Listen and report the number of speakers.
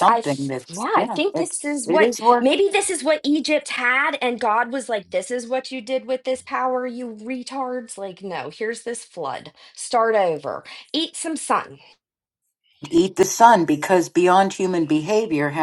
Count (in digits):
2